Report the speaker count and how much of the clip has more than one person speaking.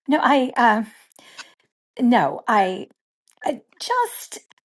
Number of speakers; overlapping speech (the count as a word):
one, no overlap